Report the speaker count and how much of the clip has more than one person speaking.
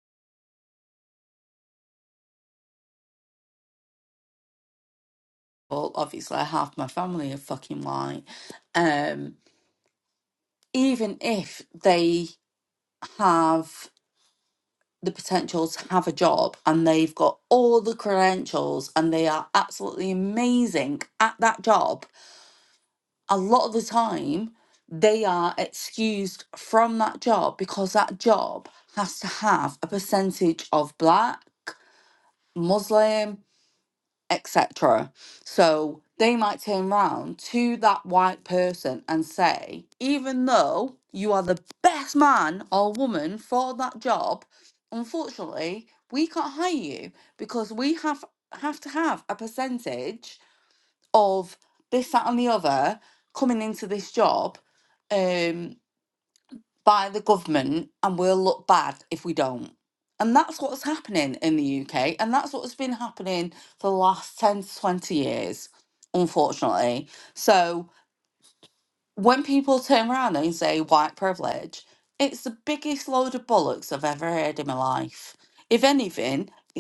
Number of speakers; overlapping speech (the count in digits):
1, no overlap